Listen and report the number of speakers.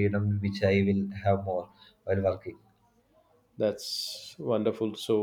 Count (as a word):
two